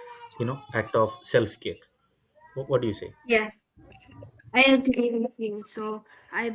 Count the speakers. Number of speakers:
two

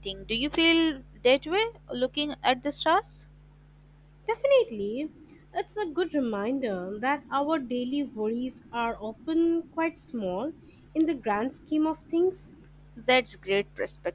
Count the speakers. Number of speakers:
two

